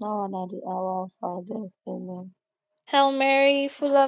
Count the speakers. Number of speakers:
2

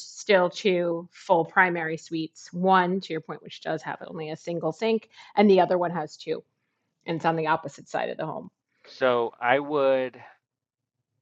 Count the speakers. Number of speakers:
2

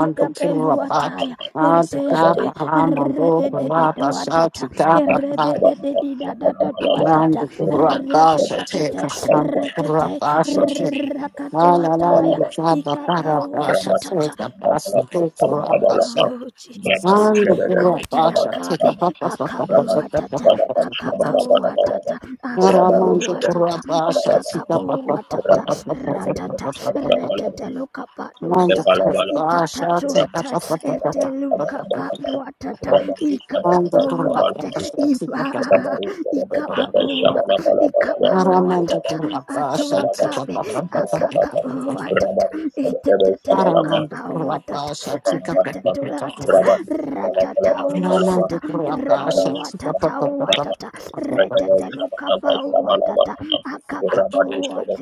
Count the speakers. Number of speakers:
3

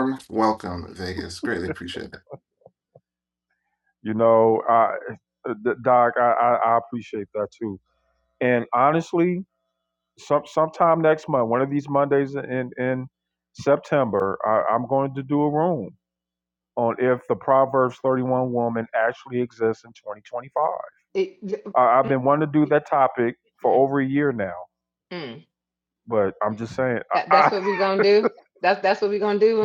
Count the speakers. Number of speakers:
3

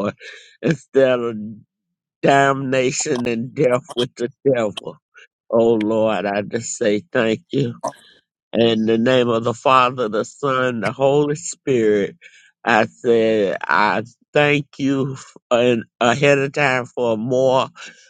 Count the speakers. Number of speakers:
1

